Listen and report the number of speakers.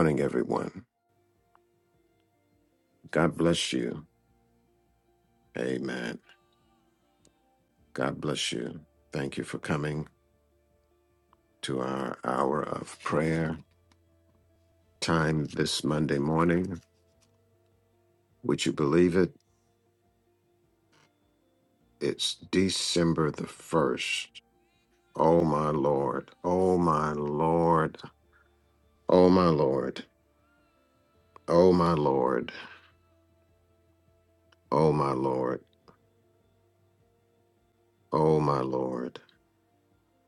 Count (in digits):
1